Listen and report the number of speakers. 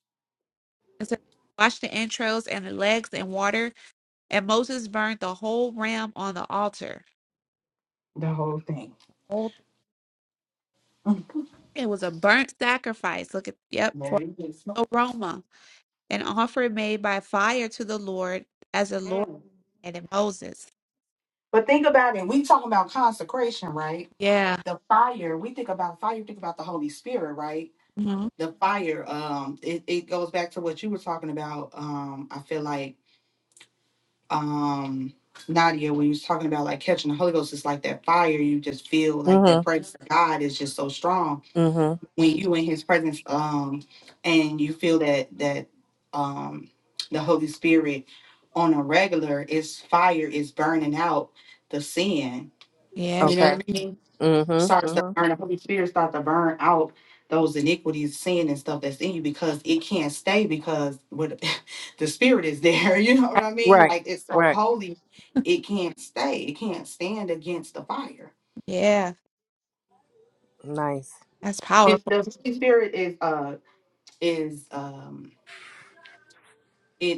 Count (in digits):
3